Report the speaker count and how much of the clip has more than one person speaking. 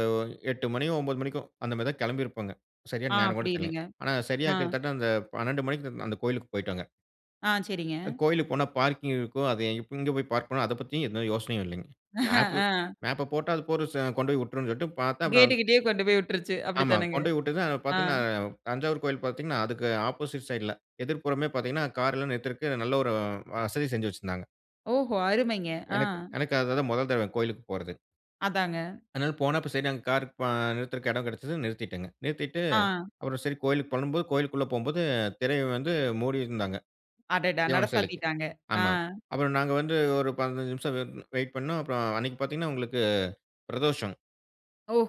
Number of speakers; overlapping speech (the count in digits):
2, about 7%